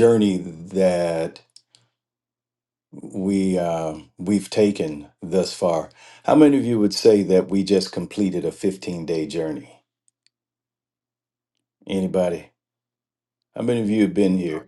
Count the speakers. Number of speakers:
1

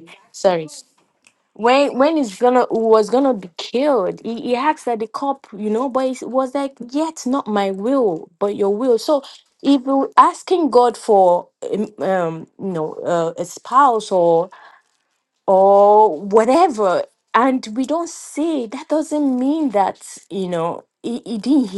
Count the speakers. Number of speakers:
1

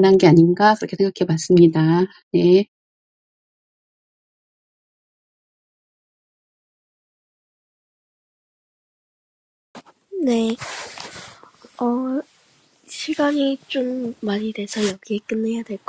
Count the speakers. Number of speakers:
2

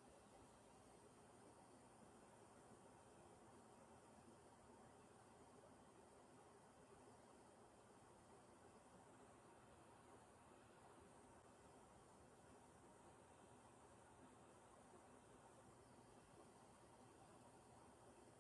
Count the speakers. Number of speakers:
0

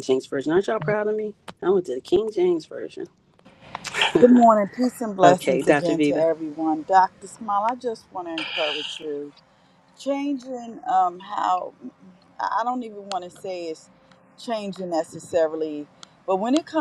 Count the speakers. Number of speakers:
2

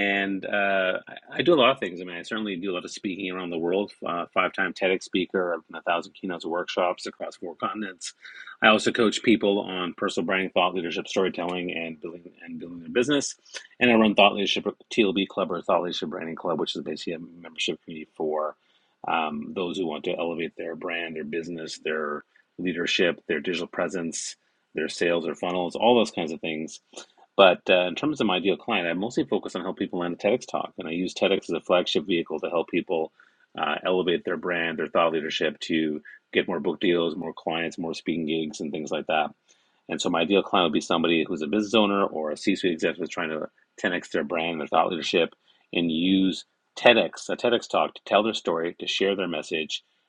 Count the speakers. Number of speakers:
1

